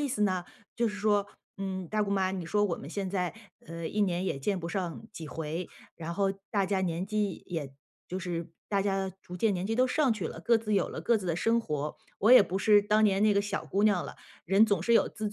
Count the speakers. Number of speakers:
1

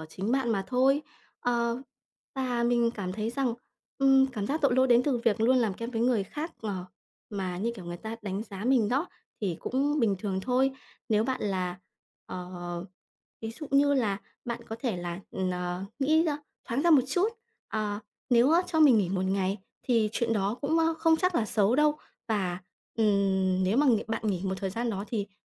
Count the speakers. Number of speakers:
1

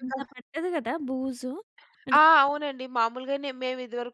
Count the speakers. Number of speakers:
2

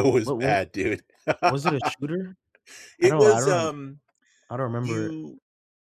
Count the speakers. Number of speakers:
2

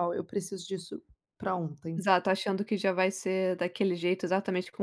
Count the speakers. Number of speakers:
2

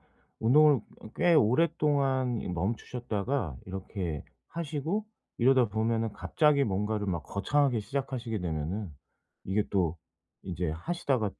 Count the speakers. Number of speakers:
1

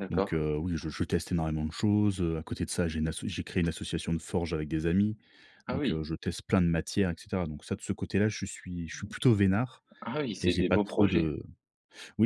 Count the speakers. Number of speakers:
2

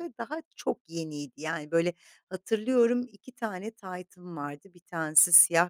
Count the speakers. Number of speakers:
1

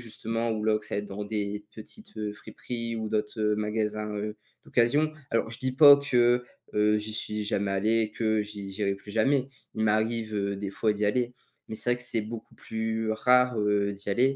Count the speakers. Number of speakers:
1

